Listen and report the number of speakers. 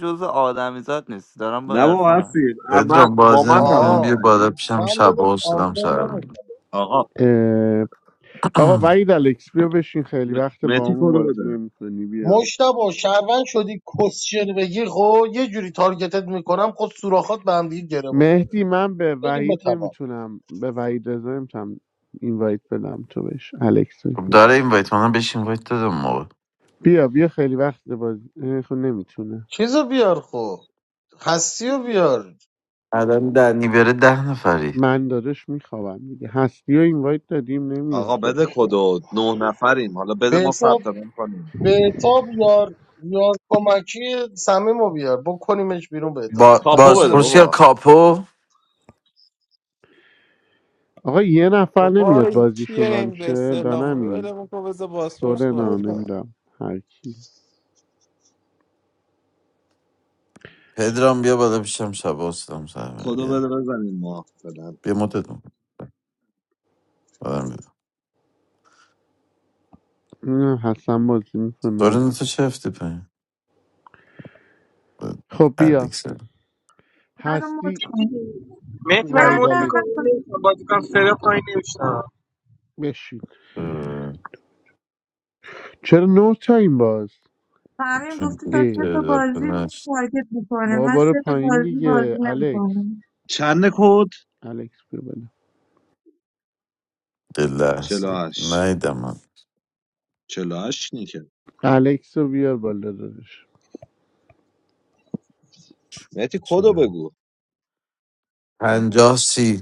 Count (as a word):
eight